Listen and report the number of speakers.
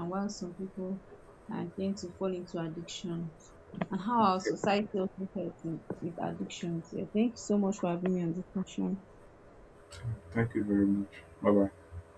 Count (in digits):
2